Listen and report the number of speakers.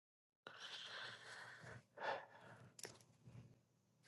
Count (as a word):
zero